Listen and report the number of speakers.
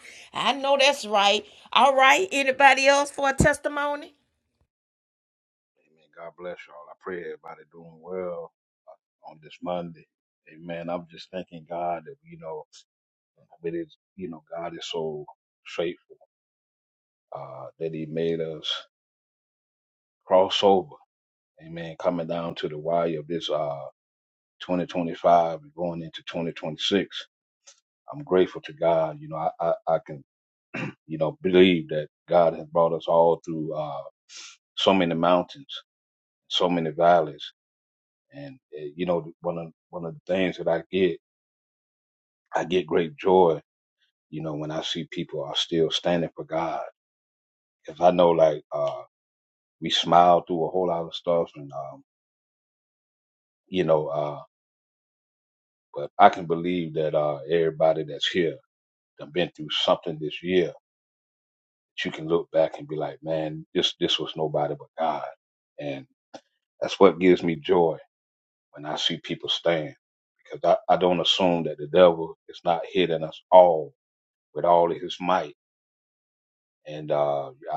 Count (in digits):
2